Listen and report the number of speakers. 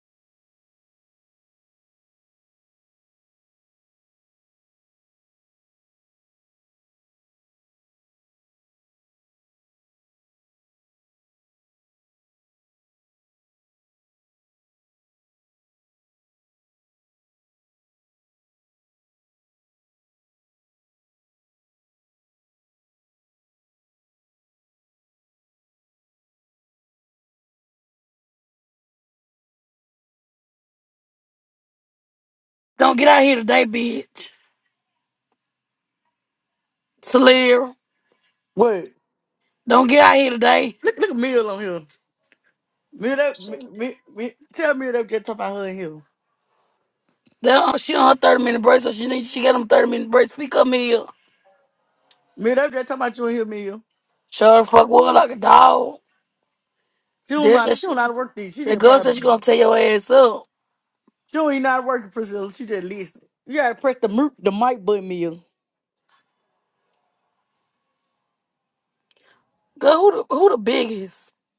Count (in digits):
2